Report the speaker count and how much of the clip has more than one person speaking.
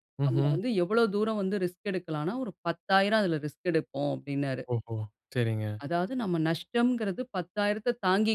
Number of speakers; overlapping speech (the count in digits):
2, about 4%